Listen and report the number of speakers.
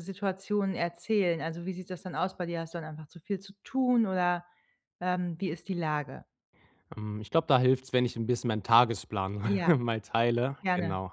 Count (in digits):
2